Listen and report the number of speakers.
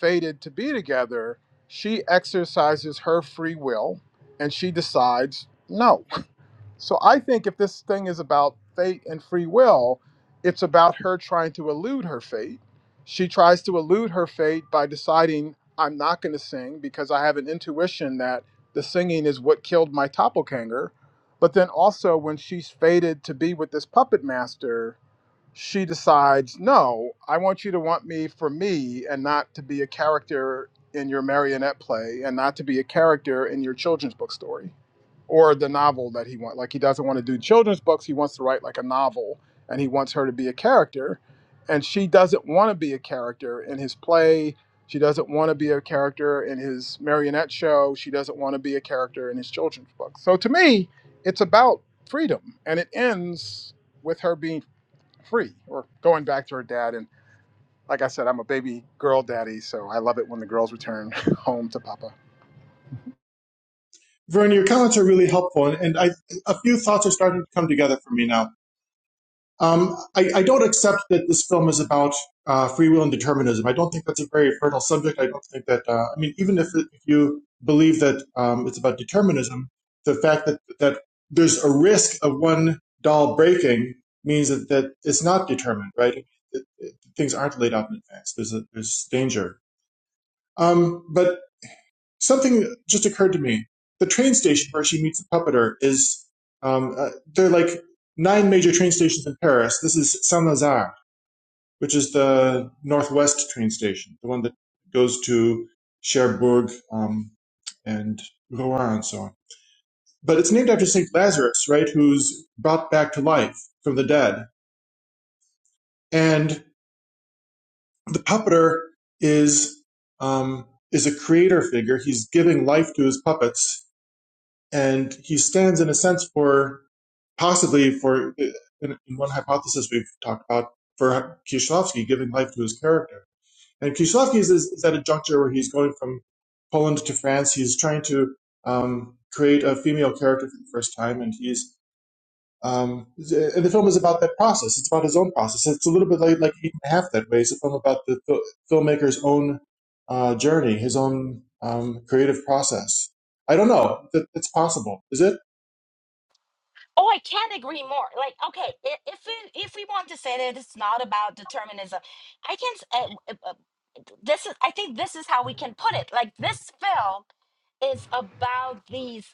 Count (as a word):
three